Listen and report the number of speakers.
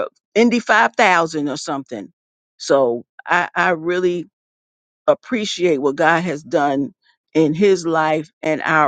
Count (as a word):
one